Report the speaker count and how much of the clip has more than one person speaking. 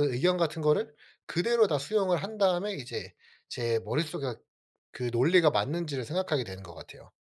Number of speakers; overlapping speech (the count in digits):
1, no overlap